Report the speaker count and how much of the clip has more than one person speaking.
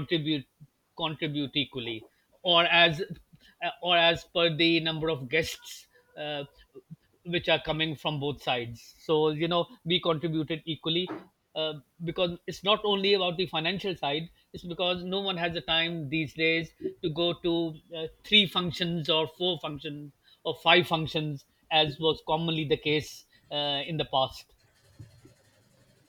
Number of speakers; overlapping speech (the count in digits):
1, no overlap